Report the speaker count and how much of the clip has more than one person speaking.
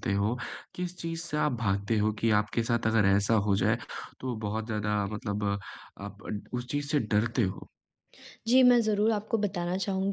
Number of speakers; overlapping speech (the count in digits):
2, no overlap